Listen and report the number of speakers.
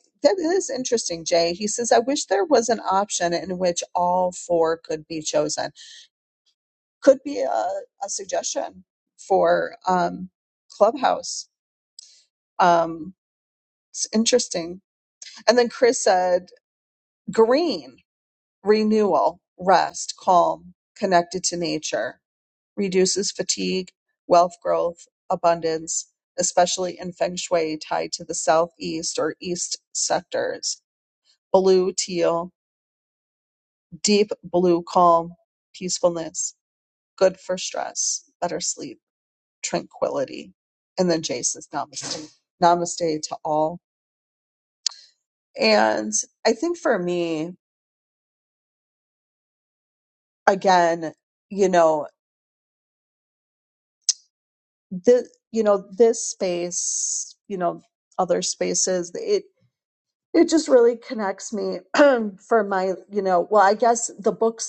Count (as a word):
one